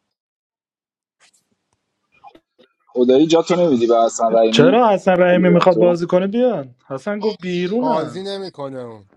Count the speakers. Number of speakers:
three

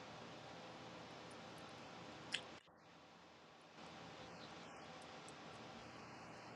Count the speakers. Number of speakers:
zero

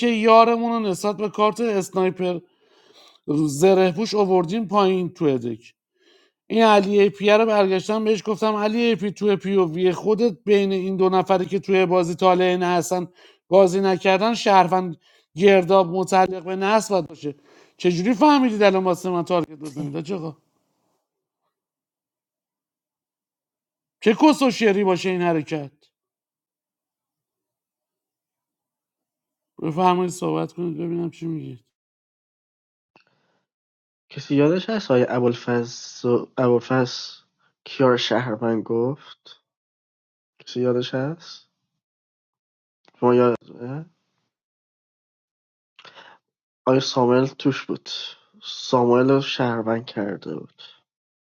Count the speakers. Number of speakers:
two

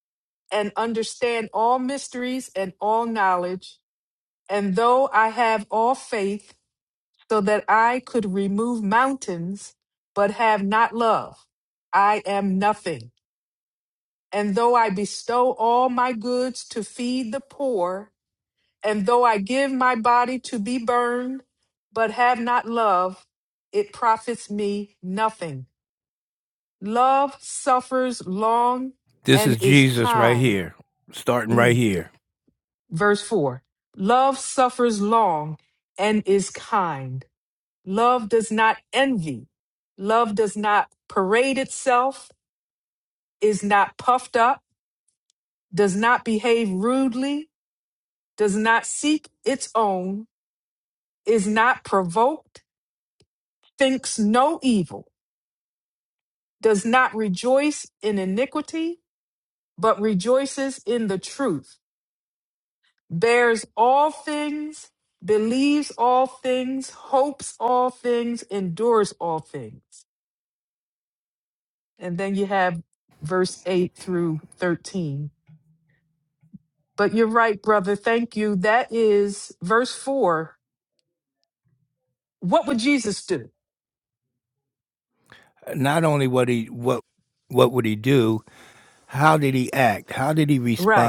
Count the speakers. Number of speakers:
two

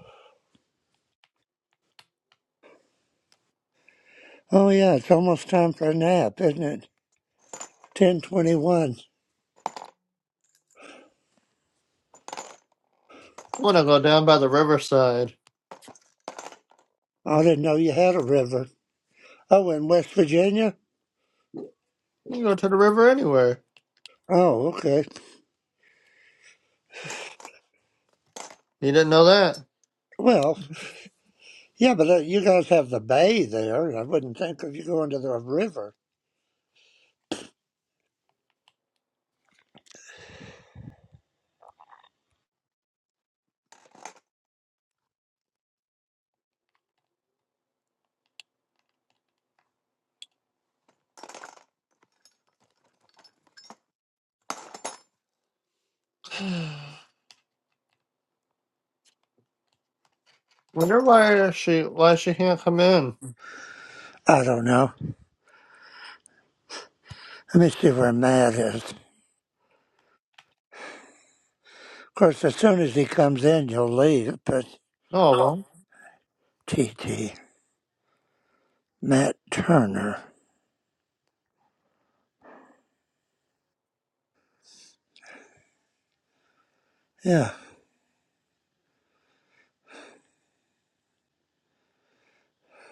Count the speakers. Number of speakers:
two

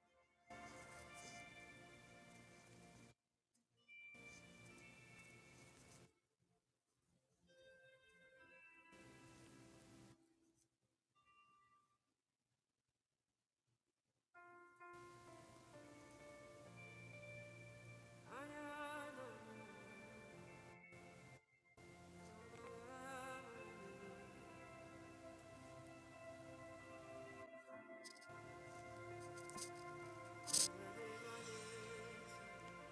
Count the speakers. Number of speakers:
zero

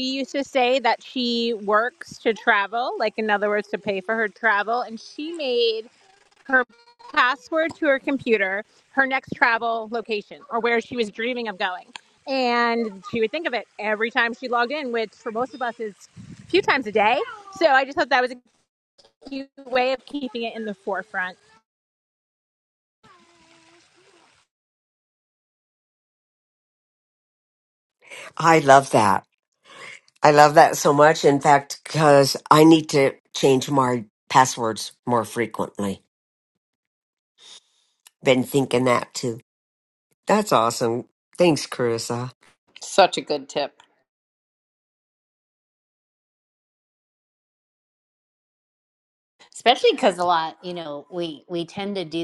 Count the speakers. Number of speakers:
three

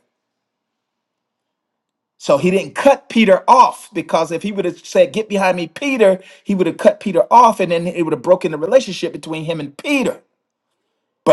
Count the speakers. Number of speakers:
one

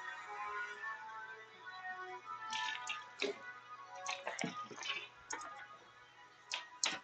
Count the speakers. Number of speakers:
zero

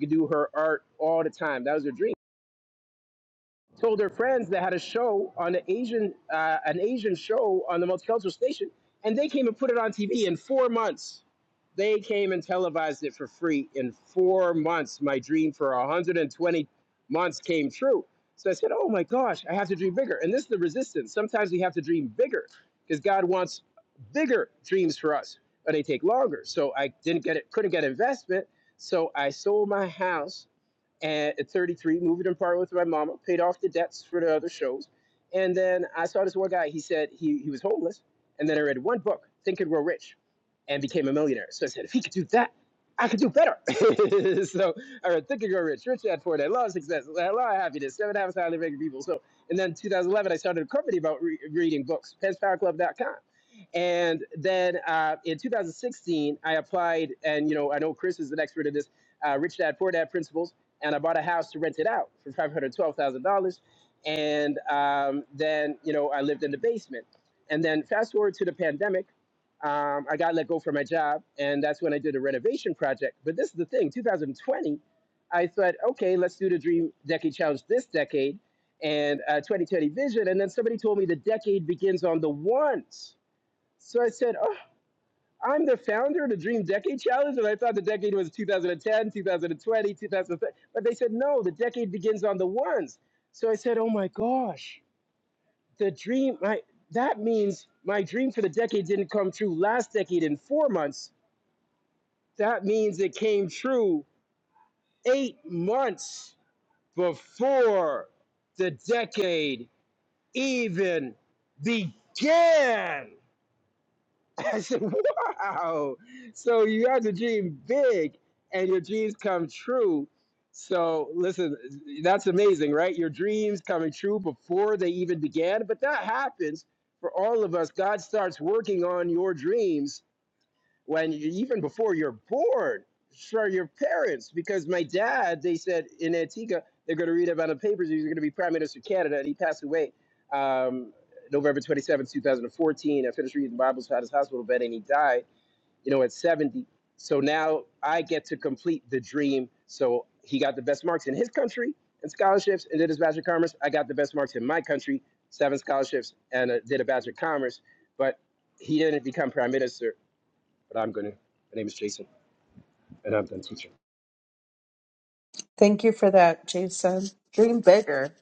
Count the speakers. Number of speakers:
two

